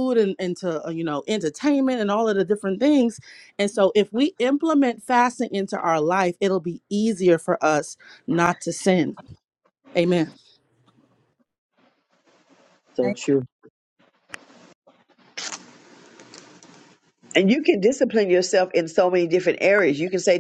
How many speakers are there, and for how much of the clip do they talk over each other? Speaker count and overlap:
two, no overlap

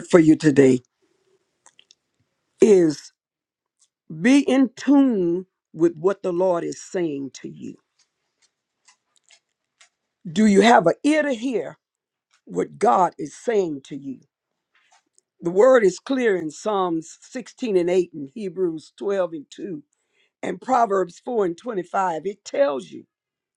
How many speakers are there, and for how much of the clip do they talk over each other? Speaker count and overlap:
one, no overlap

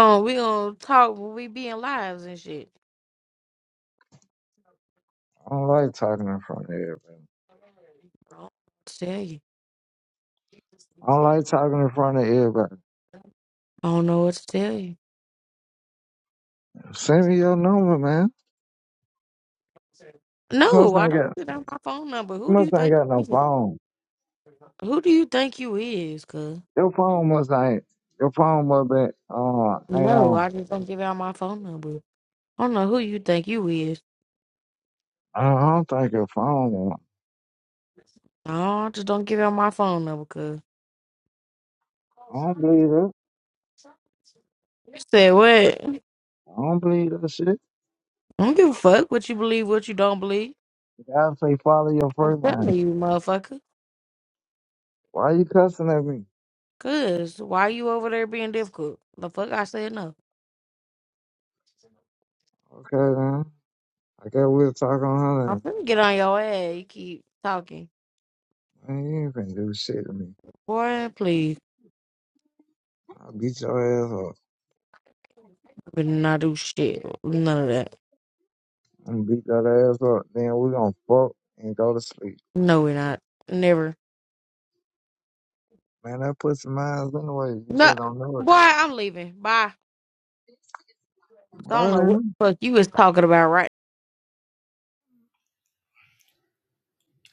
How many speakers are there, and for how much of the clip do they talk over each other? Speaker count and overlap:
two, about 4%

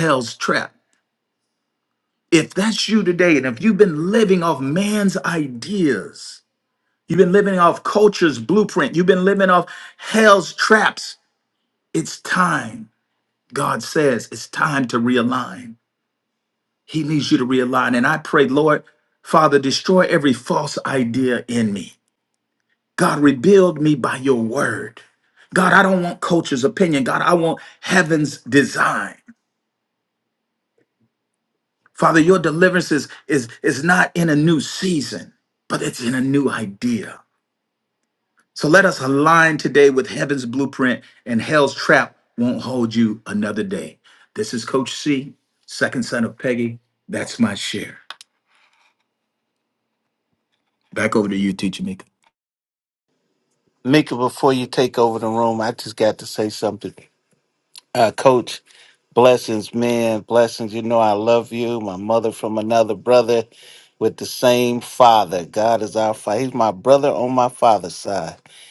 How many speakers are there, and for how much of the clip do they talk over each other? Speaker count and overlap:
two, no overlap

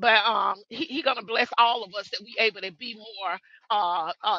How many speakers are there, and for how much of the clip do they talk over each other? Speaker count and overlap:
one, no overlap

